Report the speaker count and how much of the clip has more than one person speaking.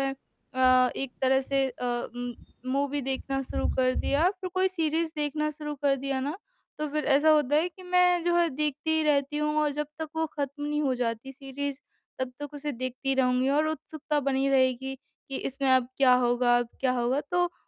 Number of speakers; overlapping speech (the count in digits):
1, no overlap